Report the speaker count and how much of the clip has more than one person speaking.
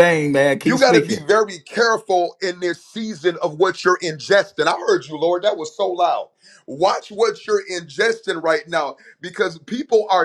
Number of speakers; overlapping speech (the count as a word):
two, about 5%